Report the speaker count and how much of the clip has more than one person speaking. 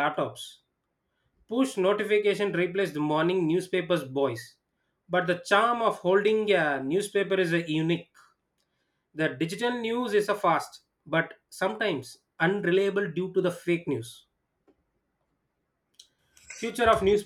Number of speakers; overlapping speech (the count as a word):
one, no overlap